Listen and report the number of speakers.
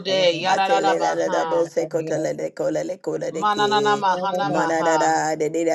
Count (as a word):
two